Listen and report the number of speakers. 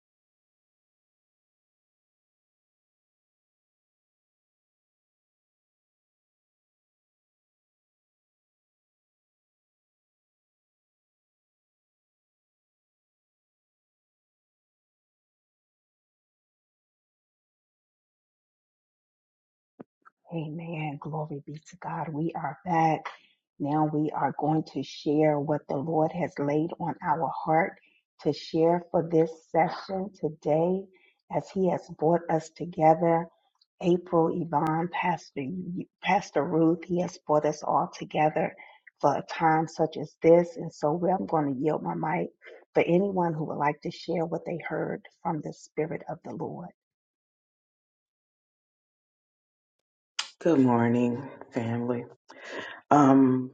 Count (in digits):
2